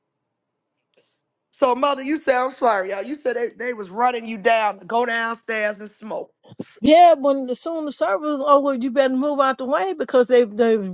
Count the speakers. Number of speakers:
2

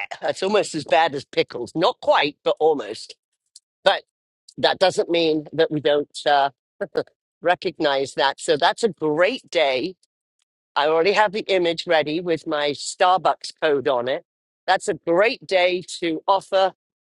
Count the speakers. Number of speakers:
1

